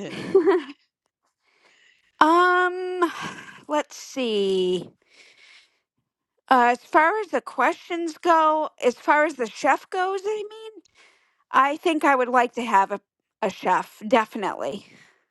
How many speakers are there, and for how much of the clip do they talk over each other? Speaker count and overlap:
1, no overlap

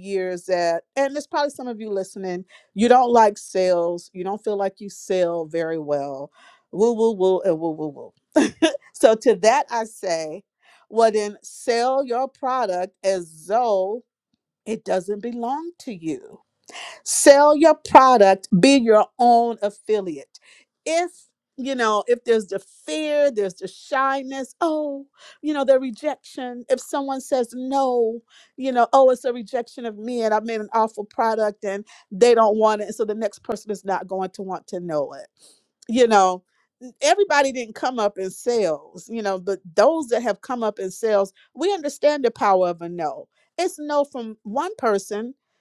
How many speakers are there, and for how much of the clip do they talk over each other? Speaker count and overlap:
1, no overlap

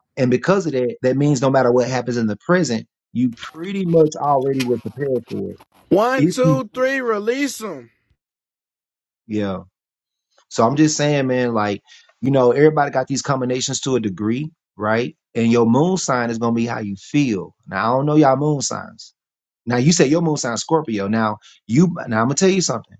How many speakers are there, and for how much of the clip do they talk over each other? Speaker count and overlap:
2, about 2%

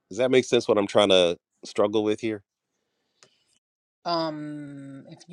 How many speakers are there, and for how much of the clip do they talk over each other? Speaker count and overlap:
2, no overlap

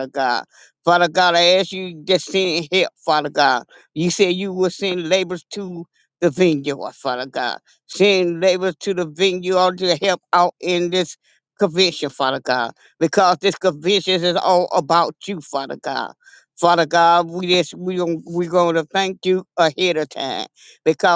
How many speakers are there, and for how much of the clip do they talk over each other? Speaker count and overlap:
1, no overlap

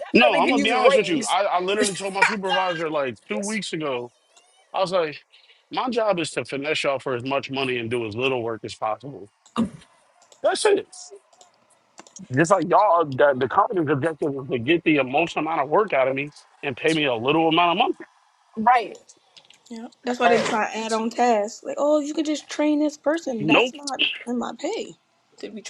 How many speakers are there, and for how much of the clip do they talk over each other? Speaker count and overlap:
3, about 7%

